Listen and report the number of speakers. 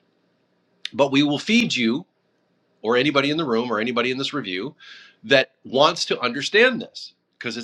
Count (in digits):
1